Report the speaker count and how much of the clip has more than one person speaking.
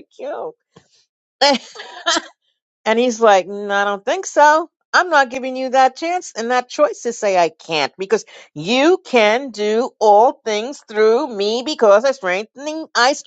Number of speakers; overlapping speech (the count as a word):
one, no overlap